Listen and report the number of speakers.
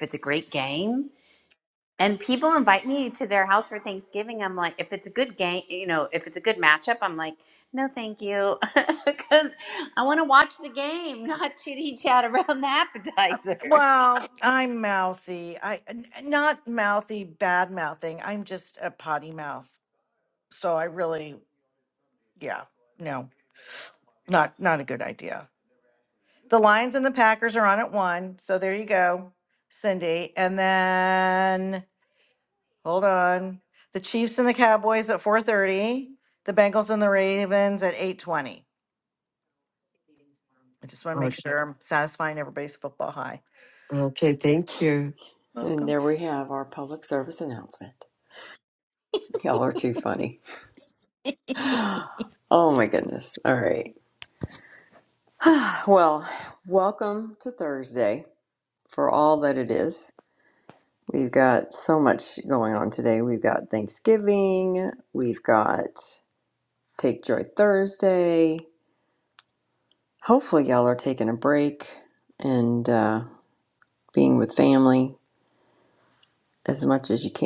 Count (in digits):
4